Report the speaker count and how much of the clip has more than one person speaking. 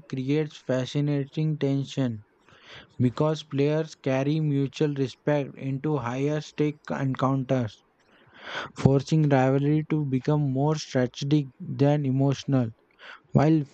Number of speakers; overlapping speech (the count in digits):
1, no overlap